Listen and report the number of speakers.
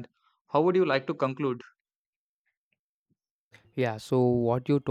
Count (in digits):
2